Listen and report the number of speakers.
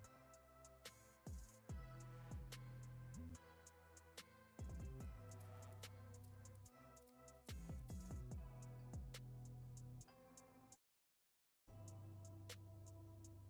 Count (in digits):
0